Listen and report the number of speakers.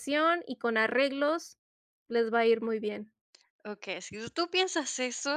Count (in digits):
2